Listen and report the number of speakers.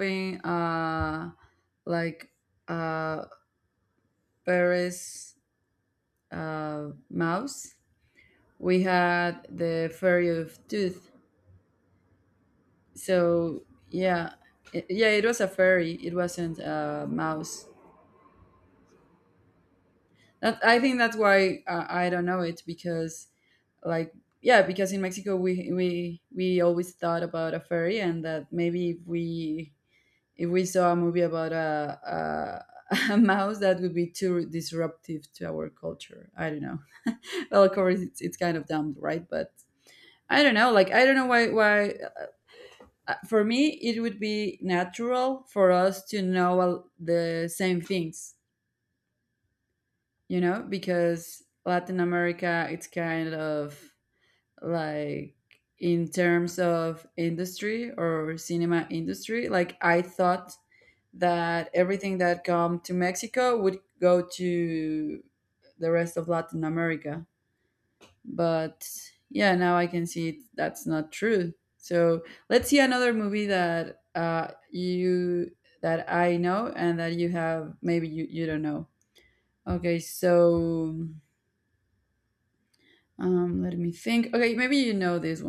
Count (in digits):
1